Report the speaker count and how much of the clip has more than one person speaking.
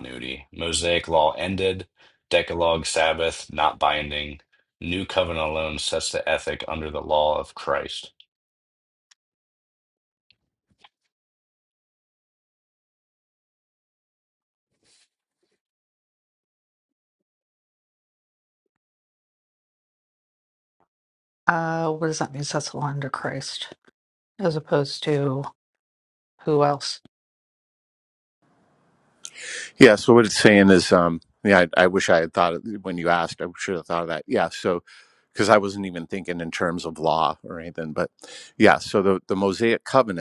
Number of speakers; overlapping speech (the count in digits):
3, no overlap